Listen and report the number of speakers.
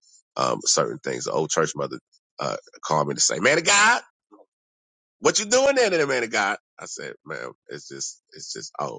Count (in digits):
1